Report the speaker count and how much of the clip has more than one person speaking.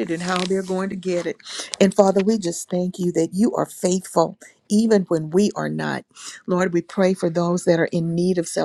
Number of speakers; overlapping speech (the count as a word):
one, no overlap